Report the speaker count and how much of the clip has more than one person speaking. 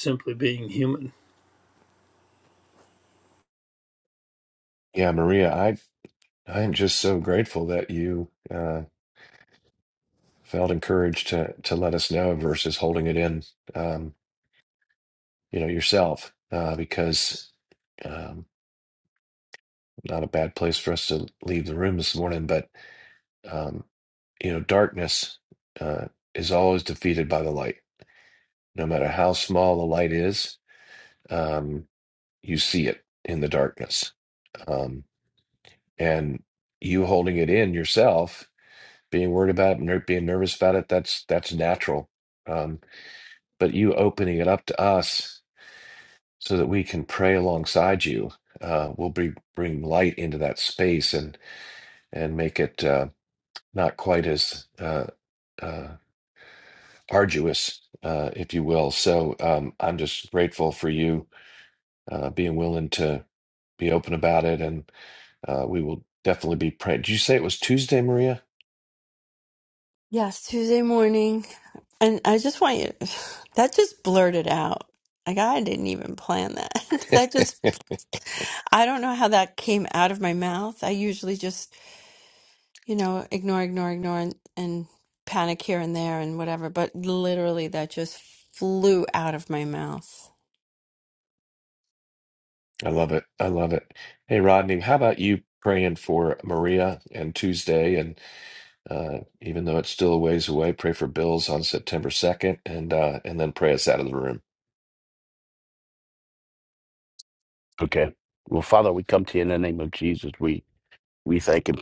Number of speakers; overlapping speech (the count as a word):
four, no overlap